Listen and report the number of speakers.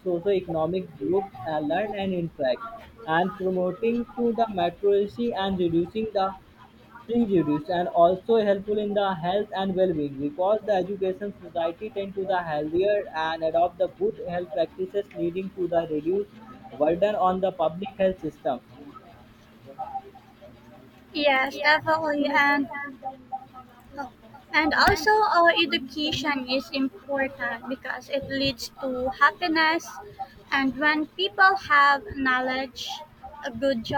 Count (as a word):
two